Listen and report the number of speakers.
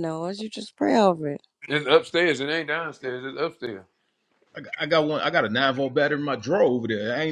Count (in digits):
3